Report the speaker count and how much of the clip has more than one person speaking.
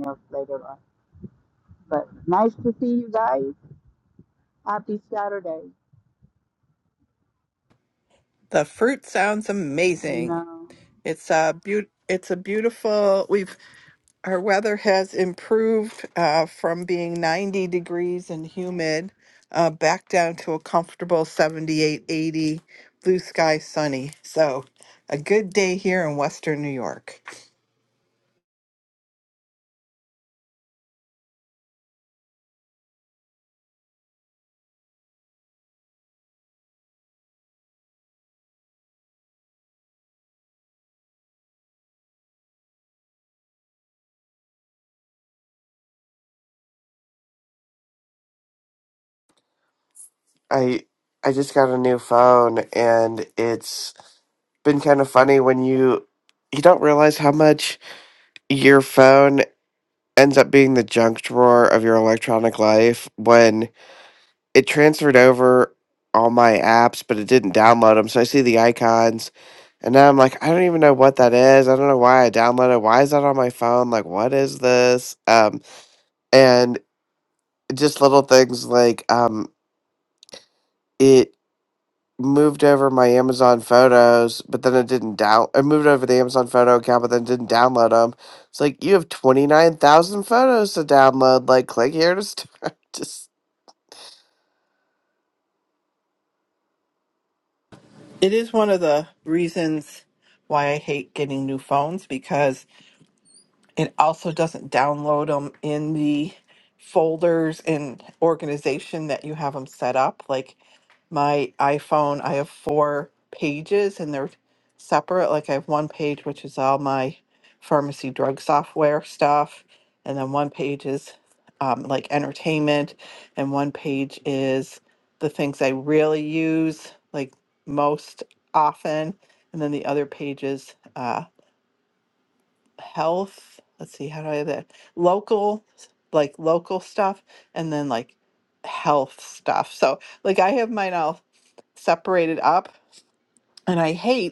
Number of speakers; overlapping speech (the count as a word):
three, under 1%